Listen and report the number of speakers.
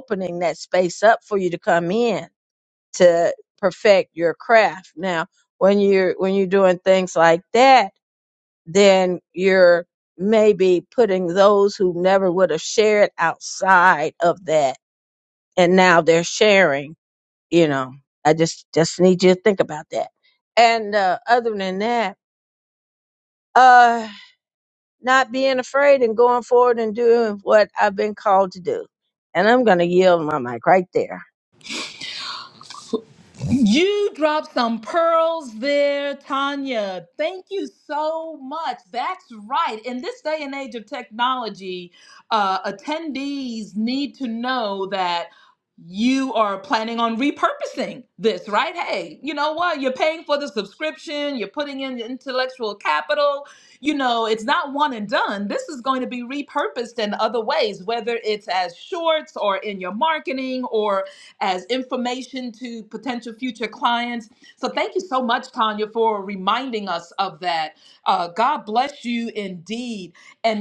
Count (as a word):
two